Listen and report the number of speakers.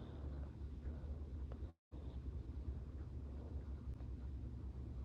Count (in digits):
0